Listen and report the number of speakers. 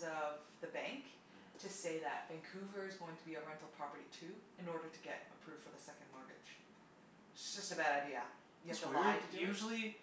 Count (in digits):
2